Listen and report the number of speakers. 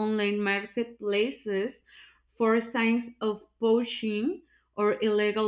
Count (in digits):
1